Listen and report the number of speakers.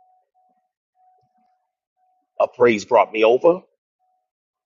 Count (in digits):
1